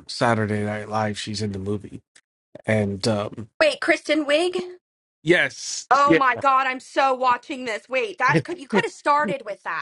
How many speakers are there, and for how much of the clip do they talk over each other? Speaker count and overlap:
2, about 3%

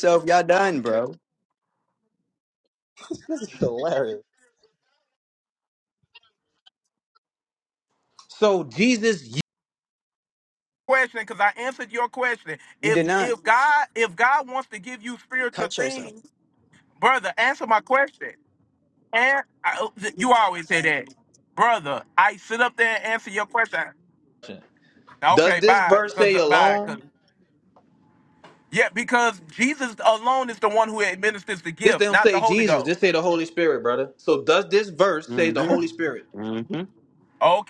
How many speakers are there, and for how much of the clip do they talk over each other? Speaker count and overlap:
3, about 11%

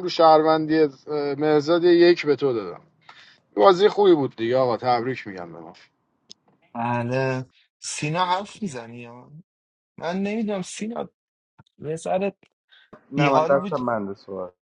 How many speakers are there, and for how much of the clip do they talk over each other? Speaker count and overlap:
3, about 4%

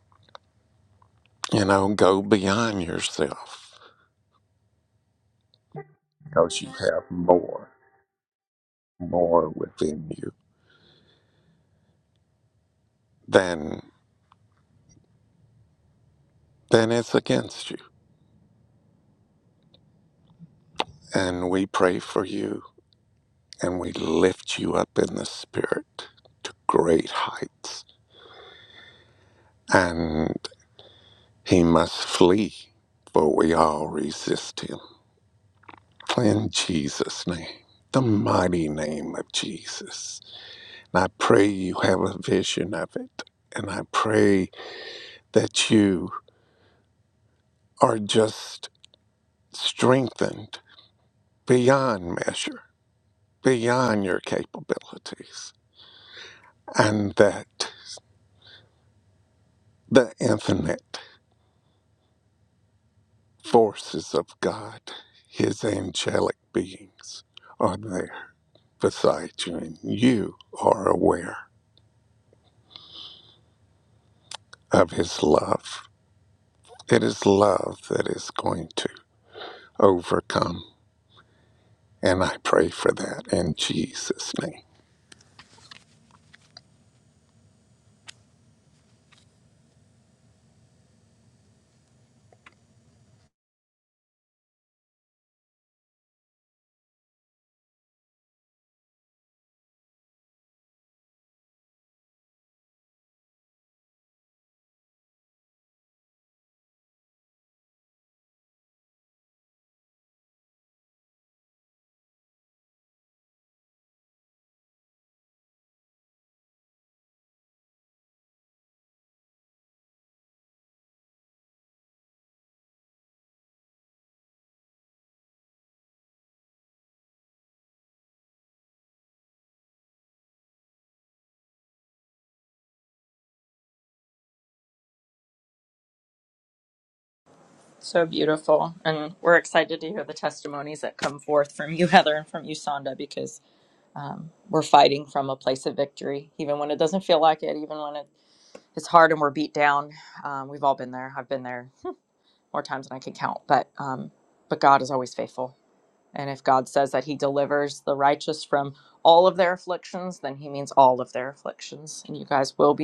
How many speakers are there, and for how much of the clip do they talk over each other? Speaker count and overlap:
2, no overlap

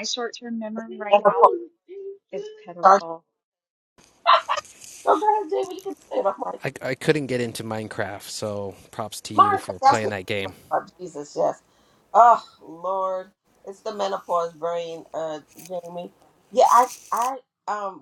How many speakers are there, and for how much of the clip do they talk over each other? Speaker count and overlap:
3, about 7%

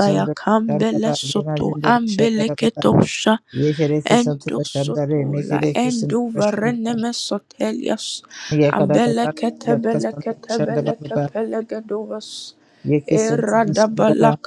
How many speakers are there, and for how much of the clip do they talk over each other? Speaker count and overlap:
2, about 61%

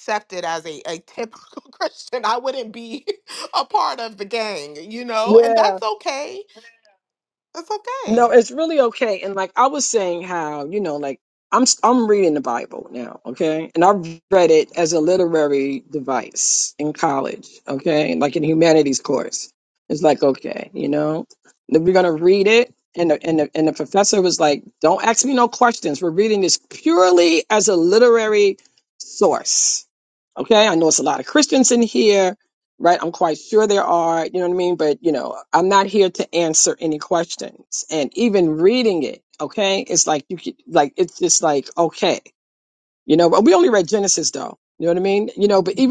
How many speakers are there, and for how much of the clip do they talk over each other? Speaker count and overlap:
2, about 1%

